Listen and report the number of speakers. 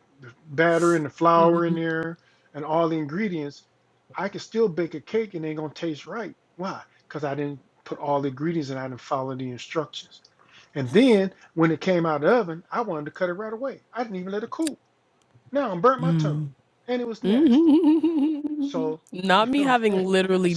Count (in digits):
2